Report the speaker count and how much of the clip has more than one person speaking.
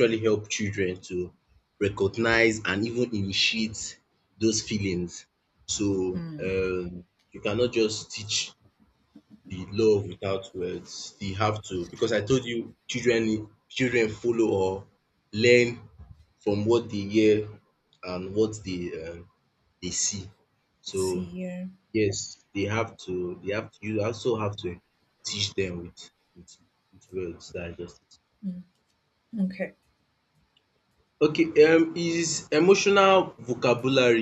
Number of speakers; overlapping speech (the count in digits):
2, about 1%